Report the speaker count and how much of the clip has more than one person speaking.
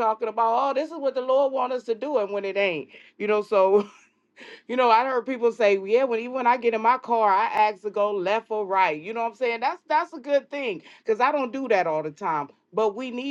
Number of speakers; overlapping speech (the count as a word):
one, no overlap